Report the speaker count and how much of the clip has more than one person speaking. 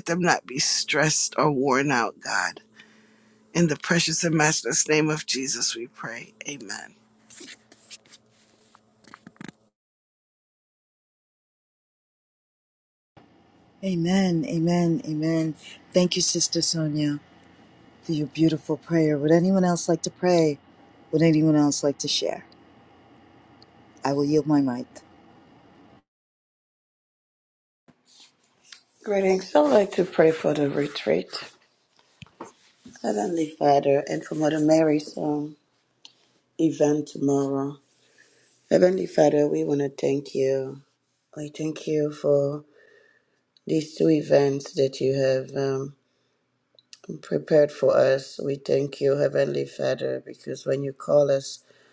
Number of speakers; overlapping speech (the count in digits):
3, no overlap